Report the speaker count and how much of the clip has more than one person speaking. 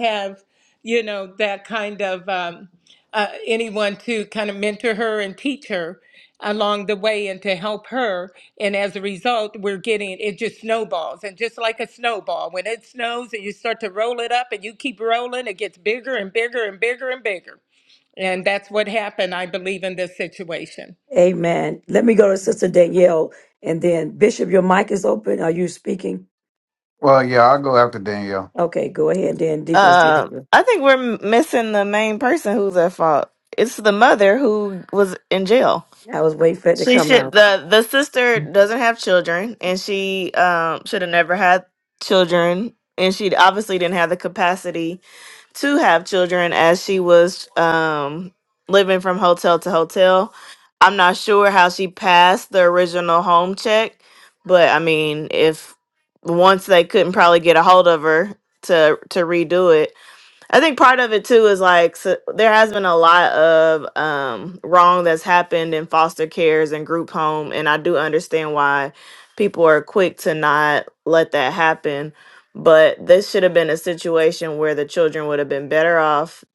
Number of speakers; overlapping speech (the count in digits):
4, about 1%